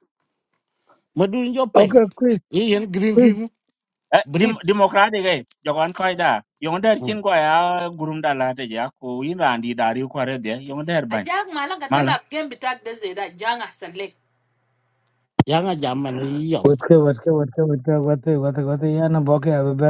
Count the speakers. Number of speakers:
4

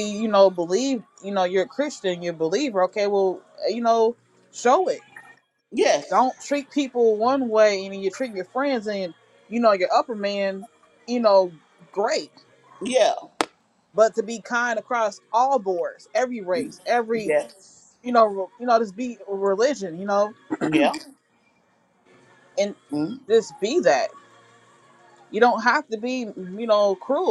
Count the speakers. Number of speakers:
2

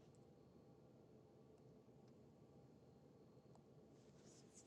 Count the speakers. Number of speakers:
0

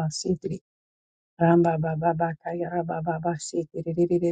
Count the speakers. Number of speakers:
1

